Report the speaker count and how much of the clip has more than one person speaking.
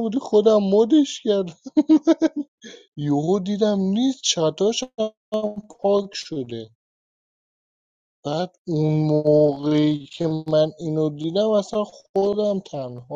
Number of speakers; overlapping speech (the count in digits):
1, no overlap